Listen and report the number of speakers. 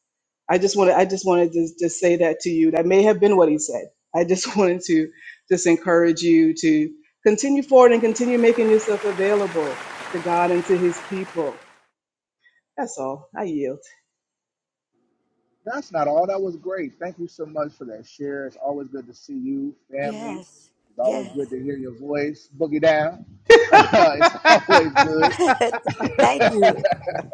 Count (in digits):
3